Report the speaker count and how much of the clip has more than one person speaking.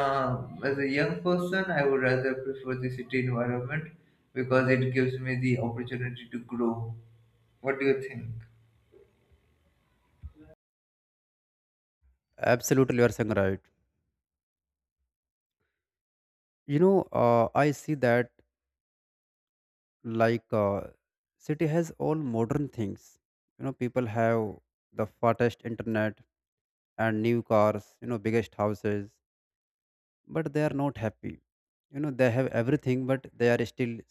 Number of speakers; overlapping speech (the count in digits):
2, no overlap